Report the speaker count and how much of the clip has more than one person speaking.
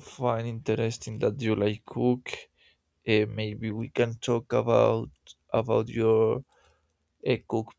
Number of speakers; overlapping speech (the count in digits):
1, no overlap